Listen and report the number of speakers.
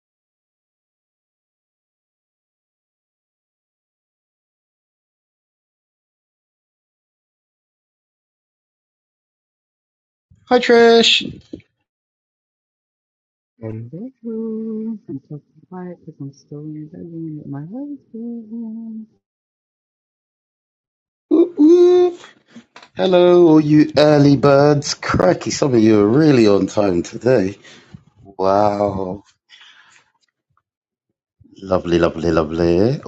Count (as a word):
two